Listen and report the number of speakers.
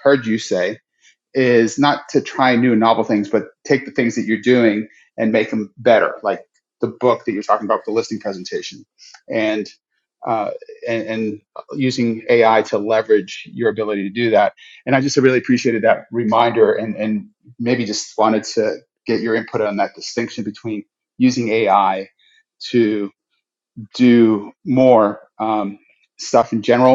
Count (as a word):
one